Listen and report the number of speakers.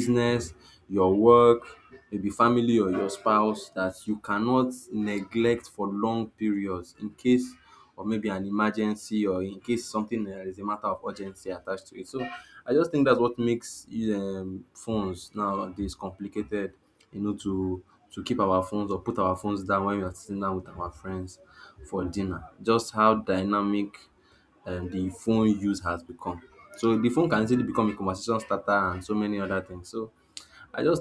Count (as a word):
one